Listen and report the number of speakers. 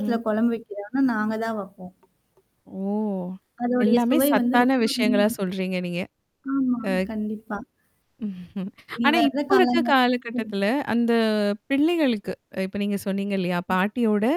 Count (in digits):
2